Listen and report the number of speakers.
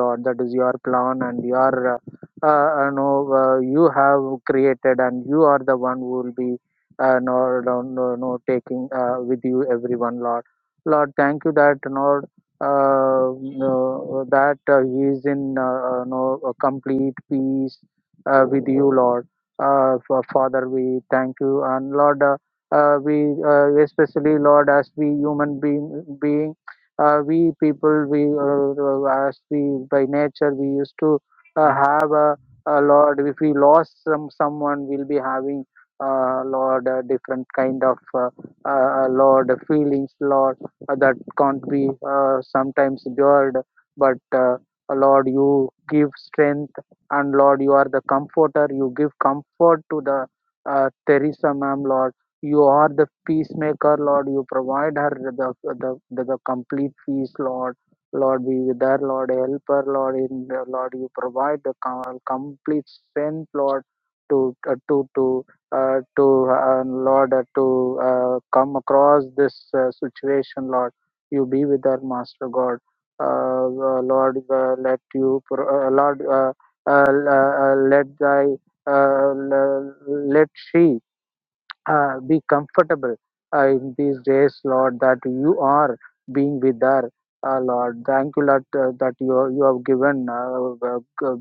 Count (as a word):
one